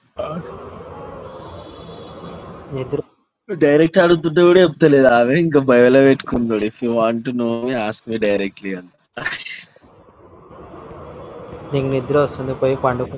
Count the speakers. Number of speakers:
two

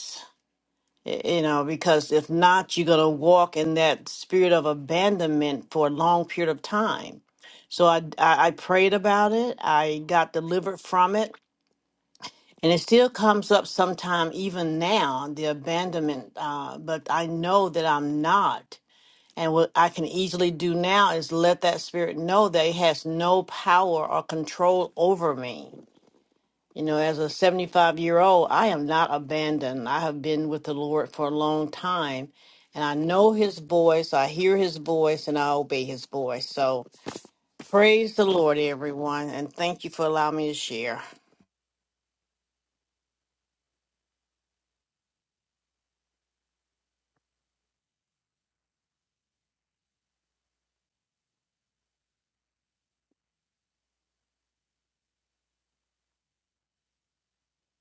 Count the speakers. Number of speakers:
one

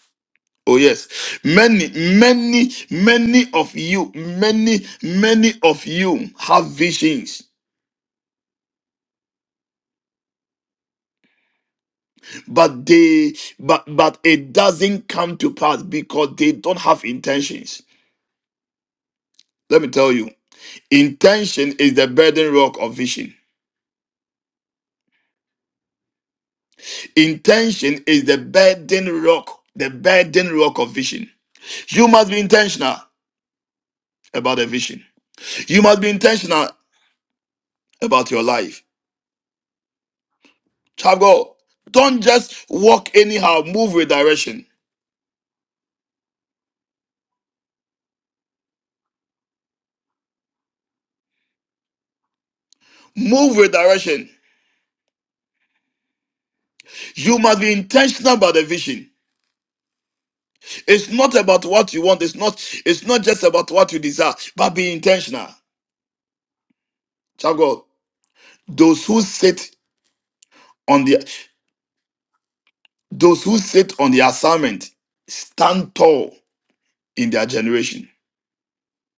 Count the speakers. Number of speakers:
one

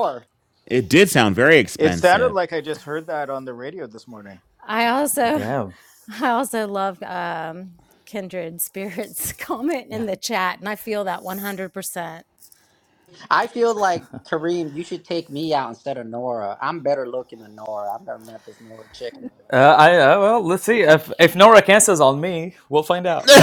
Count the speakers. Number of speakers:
five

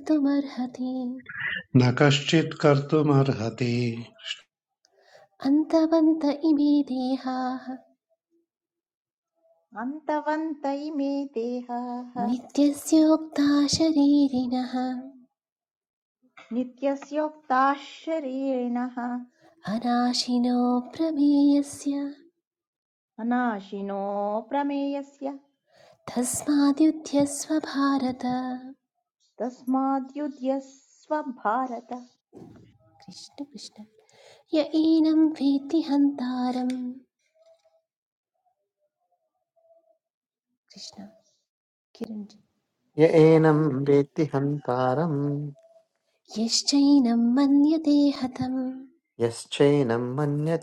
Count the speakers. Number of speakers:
four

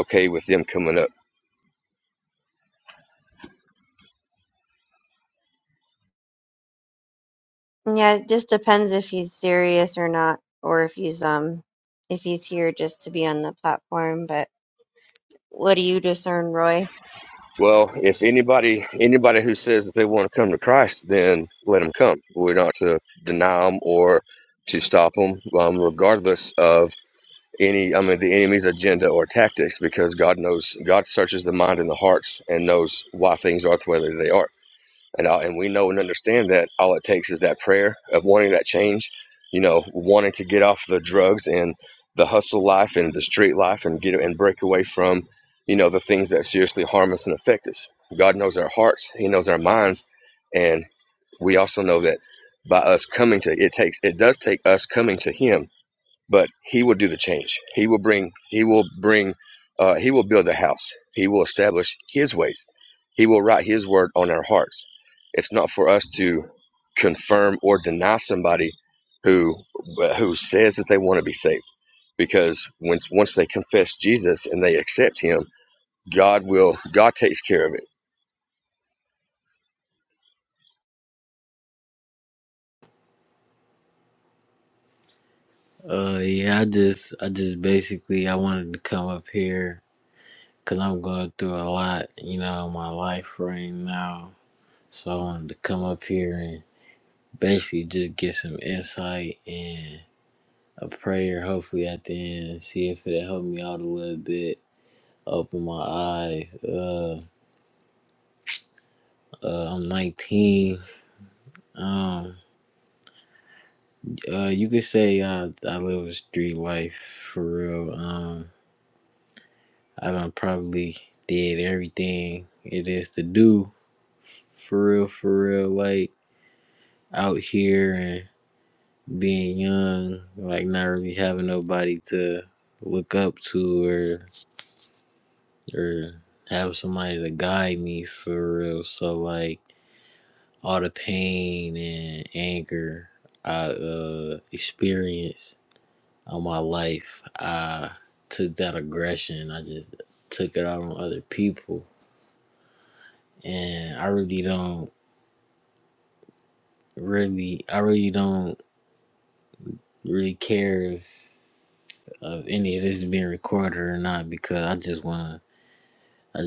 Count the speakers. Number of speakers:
three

